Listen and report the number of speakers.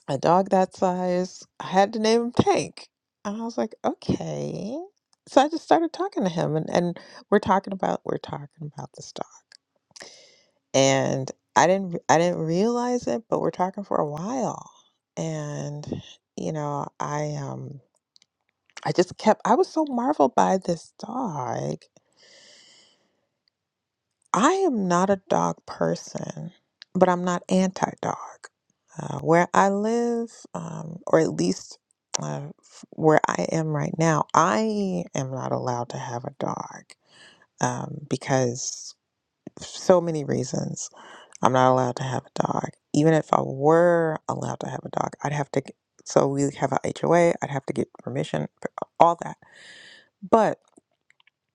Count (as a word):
one